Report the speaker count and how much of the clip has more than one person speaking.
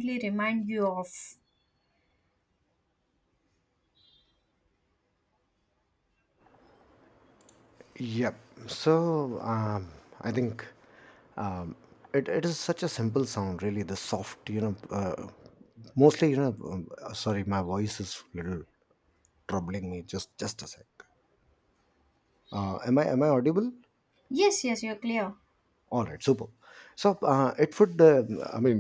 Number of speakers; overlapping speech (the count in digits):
2, no overlap